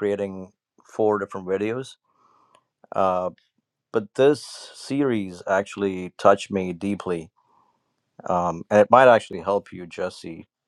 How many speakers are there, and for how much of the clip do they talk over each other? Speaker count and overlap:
1, no overlap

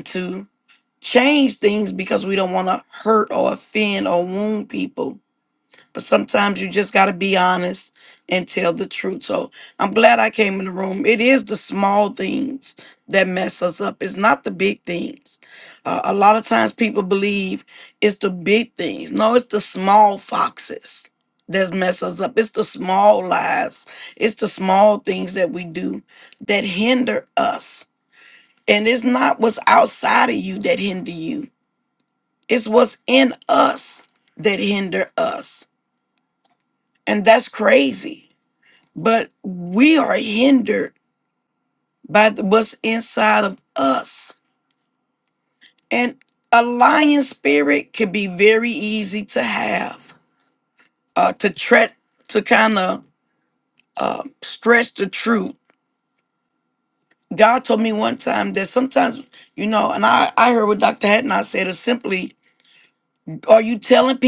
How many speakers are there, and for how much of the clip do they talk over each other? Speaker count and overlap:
1, no overlap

